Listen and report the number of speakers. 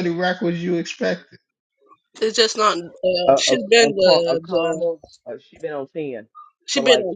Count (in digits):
3